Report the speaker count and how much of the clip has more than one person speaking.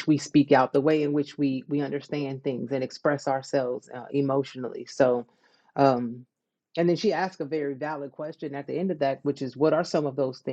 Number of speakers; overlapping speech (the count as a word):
one, no overlap